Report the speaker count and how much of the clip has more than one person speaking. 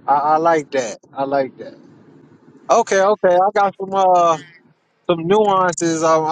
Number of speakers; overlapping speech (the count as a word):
one, no overlap